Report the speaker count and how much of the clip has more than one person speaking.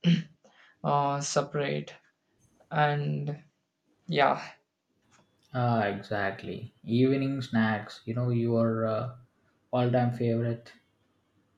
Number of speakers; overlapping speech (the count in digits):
2, no overlap